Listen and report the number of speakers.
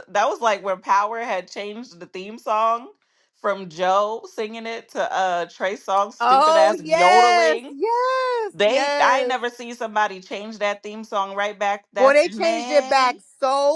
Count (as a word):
two